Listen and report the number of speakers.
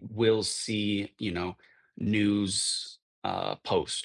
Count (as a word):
one